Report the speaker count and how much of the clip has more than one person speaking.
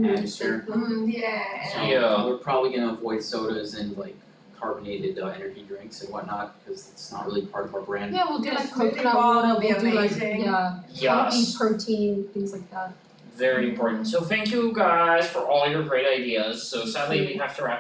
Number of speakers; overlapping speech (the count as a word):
four, about 24%